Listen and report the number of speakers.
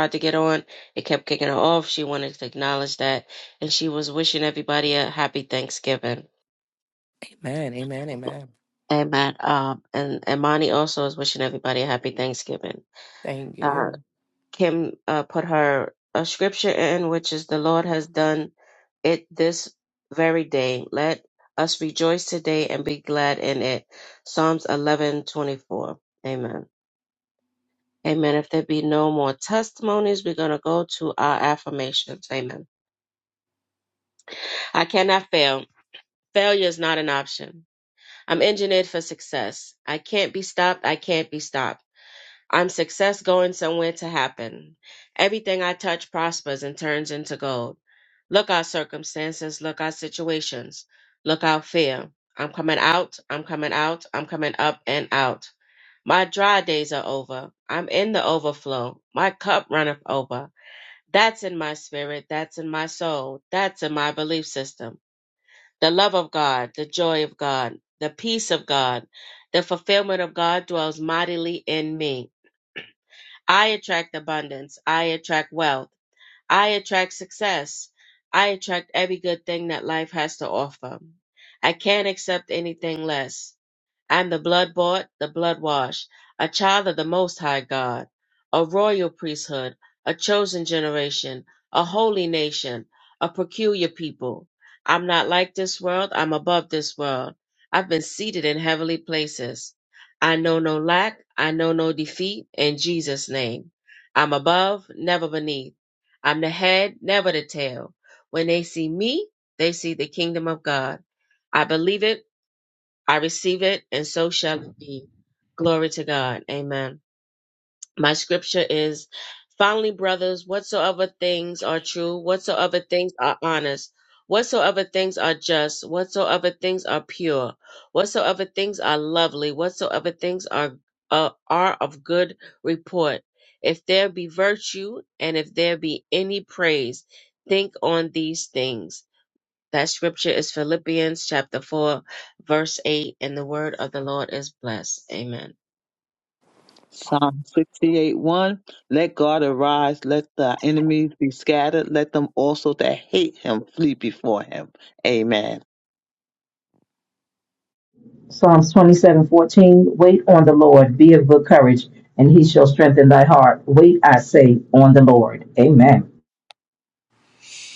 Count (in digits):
4